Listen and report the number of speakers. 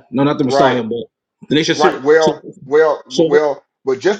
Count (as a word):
two